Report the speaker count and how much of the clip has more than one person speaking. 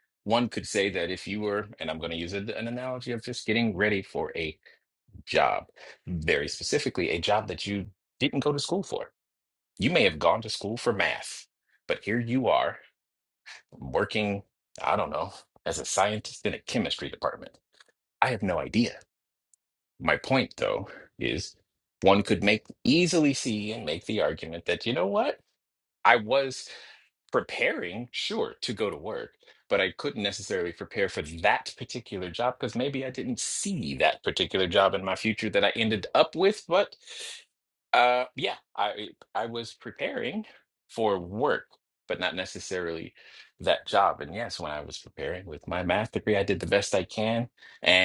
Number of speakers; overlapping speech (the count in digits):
1, no overlap